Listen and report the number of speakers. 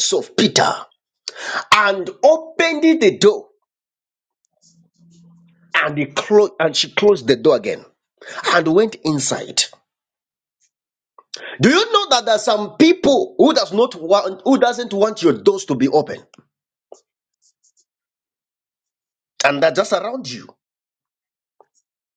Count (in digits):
1